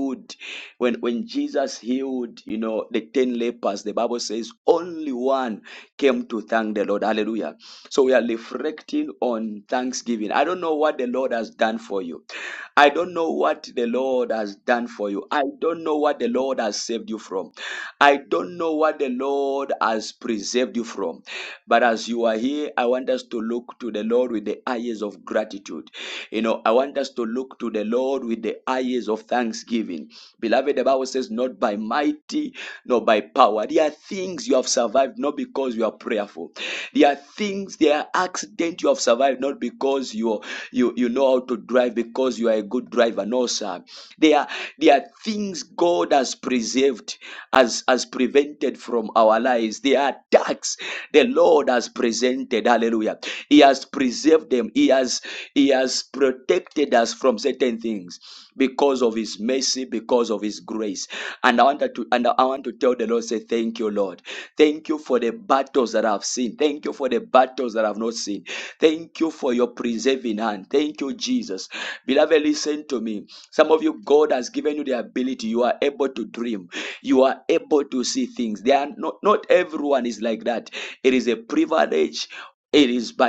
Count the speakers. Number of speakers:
one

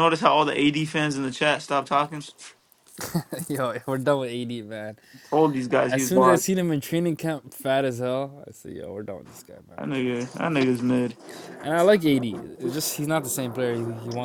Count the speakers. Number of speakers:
two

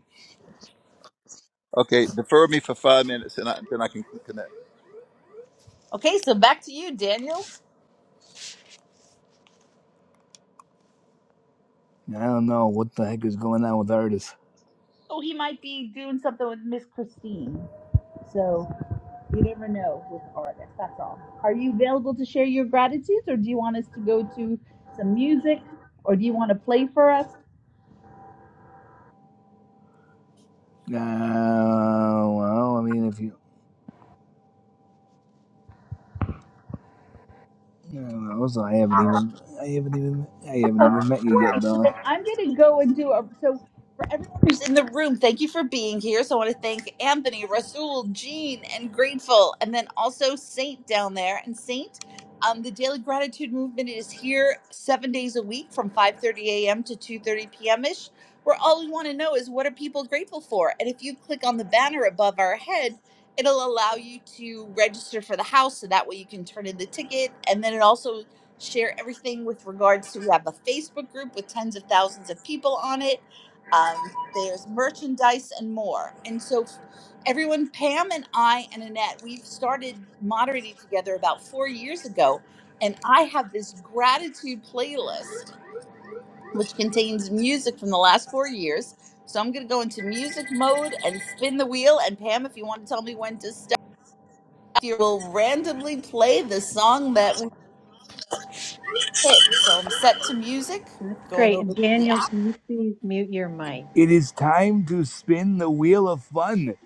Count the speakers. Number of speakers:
four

